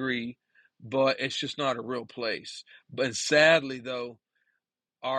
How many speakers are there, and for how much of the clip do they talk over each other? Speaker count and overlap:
one, no overlap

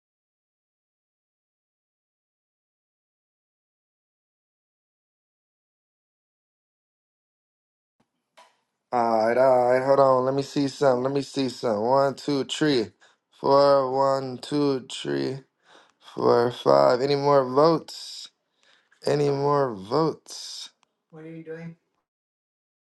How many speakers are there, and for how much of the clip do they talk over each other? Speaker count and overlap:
one, no overlap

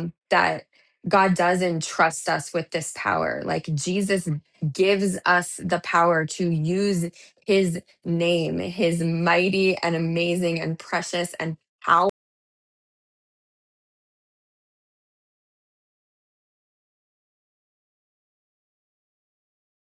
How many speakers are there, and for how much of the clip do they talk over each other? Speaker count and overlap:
one, no overlap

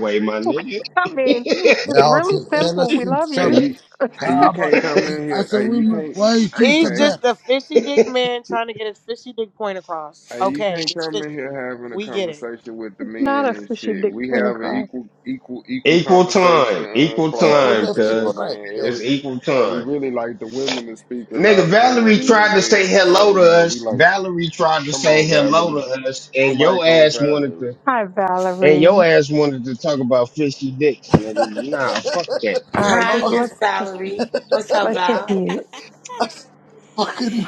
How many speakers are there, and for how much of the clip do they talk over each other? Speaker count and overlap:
six, about 50%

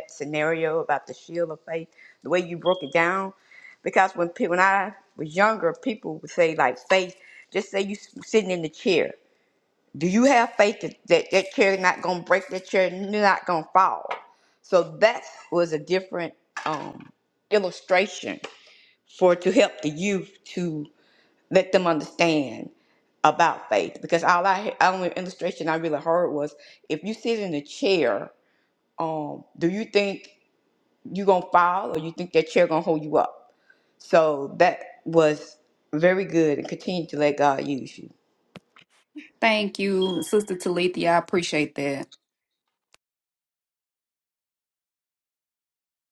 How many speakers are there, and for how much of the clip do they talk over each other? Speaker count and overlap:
two, no overlap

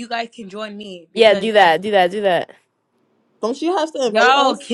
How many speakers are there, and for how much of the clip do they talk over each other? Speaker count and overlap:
three, about 18%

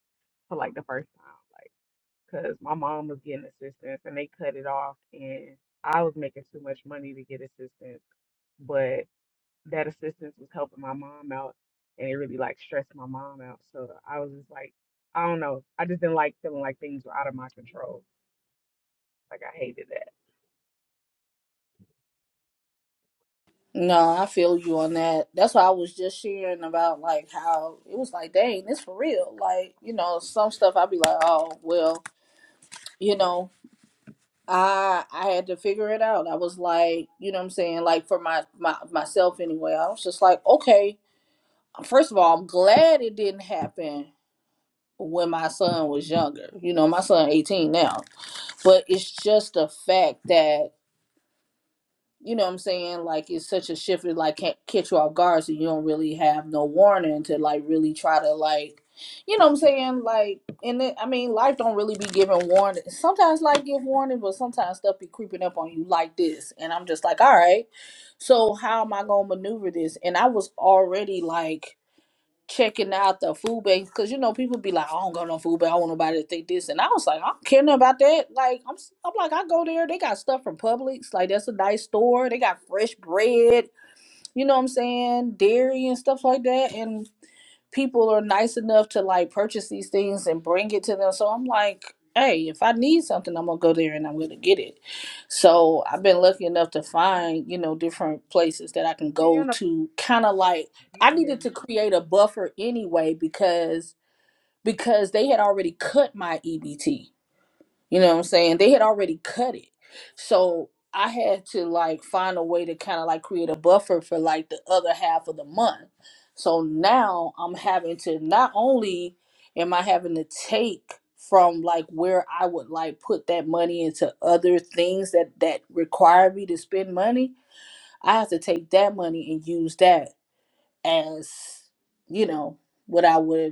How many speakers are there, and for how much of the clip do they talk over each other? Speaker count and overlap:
two, about 1%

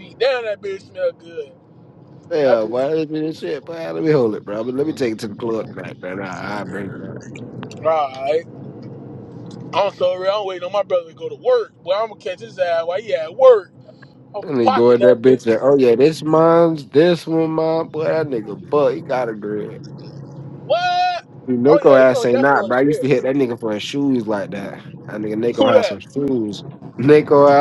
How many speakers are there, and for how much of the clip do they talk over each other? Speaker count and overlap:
two, about 13%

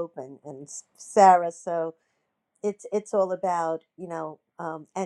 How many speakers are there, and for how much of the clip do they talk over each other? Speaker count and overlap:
one, no overlap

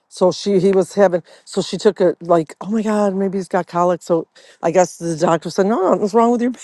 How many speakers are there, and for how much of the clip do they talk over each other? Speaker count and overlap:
one, no overlap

